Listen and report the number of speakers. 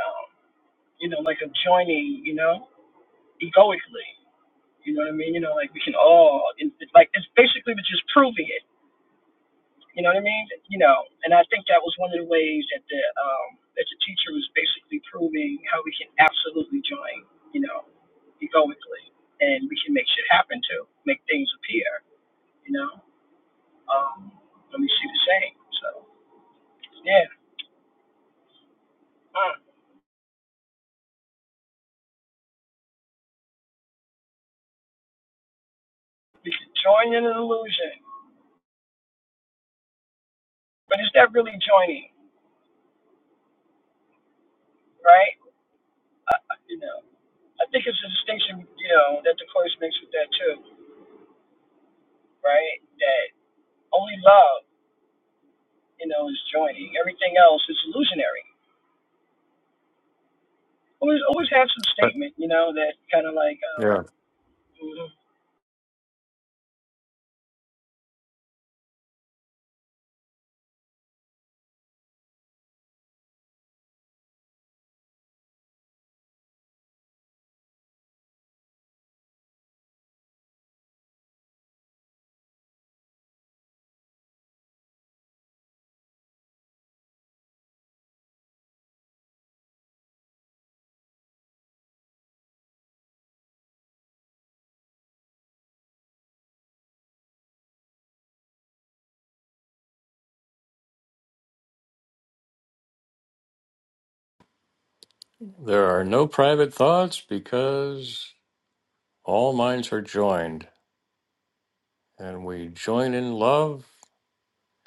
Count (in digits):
2